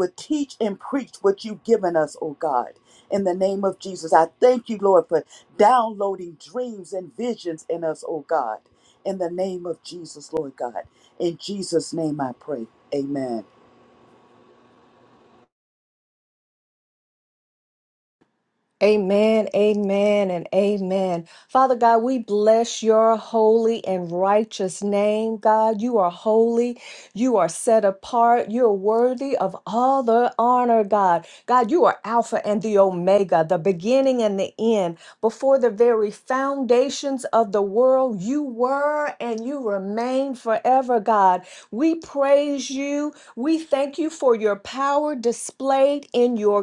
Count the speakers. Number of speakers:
two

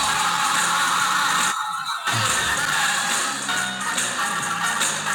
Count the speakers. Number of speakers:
zero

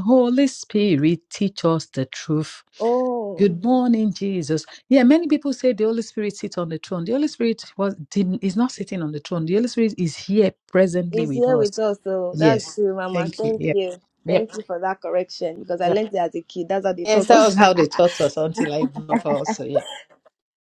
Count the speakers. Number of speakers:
two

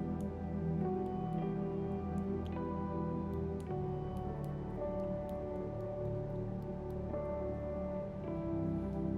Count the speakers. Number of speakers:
zero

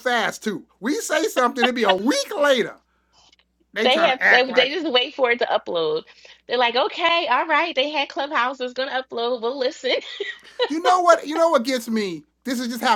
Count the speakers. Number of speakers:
two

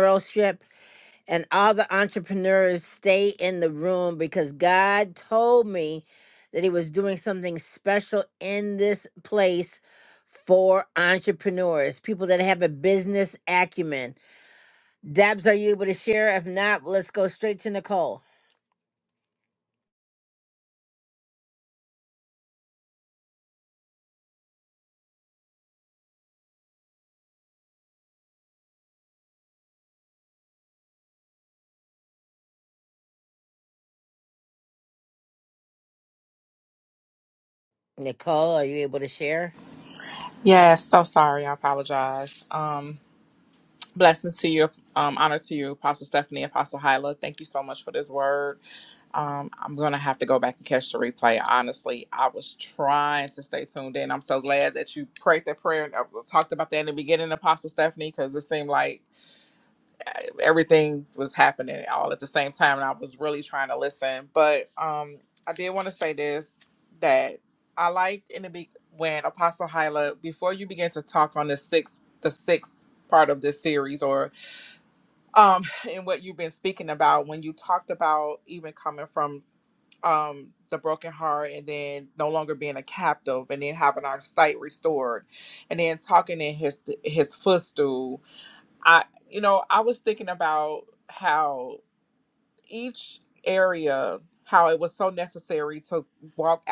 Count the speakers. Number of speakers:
two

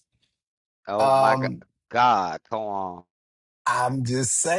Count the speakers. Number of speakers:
two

